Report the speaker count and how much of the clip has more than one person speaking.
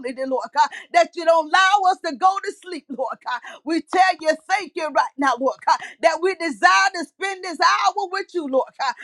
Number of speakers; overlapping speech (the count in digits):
1, no overlap